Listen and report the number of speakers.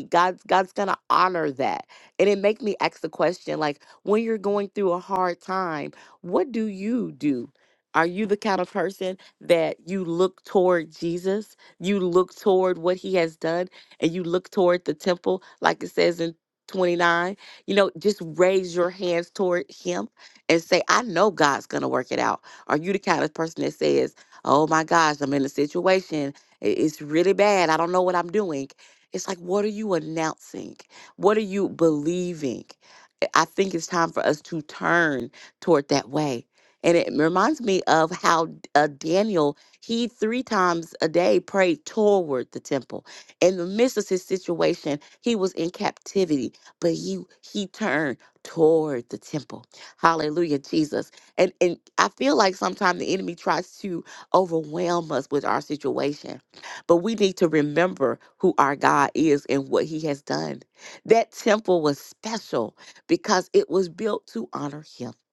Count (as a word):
one